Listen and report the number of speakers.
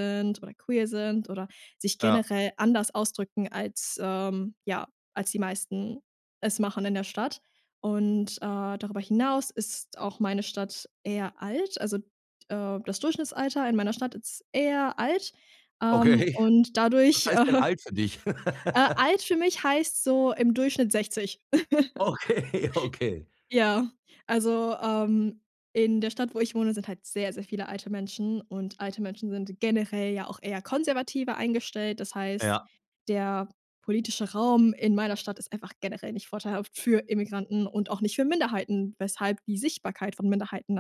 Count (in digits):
2